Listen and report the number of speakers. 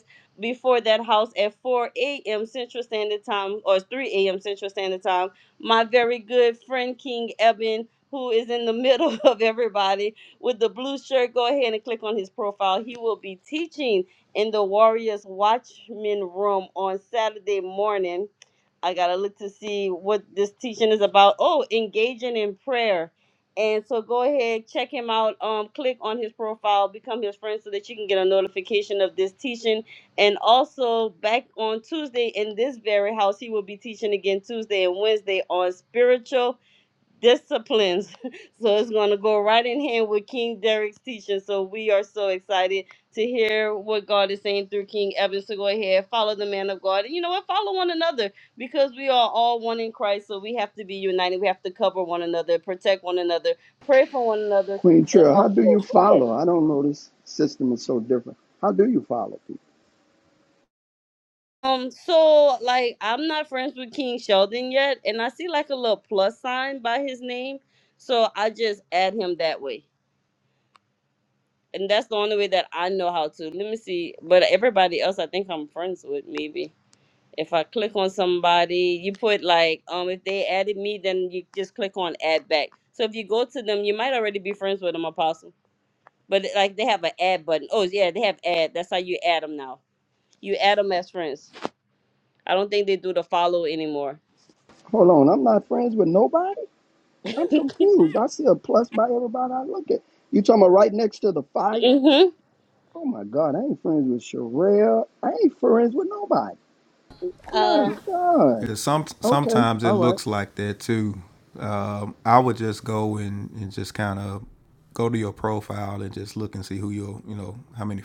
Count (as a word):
three